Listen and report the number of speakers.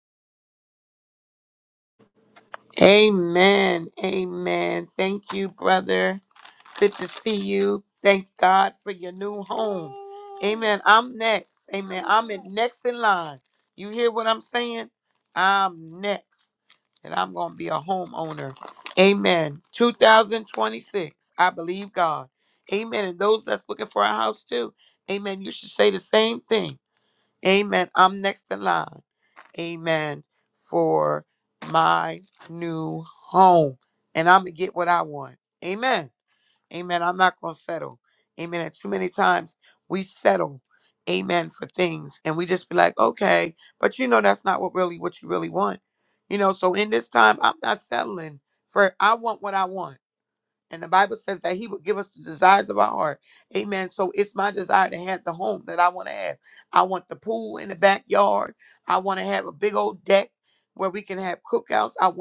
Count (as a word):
one